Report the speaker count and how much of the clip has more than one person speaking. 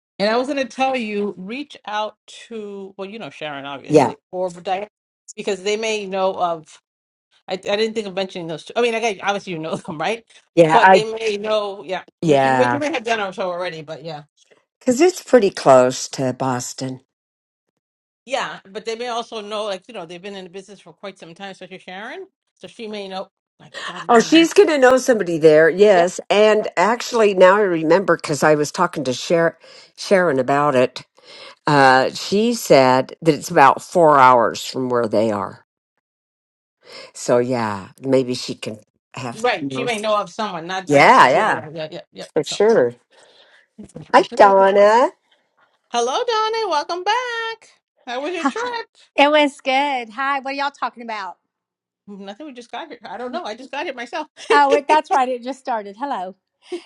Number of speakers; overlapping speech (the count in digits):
3, about 6%